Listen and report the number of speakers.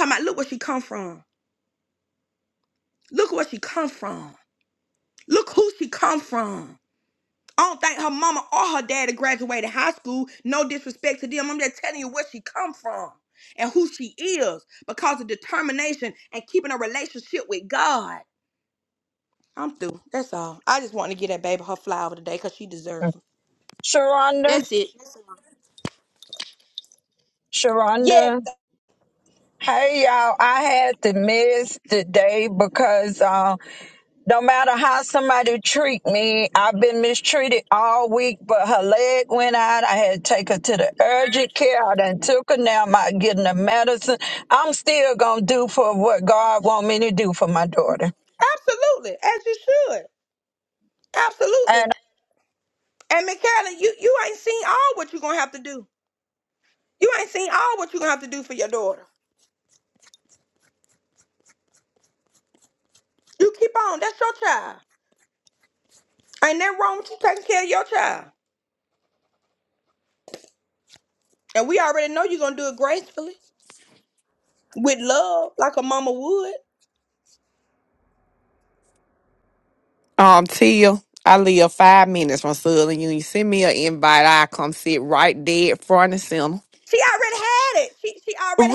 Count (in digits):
3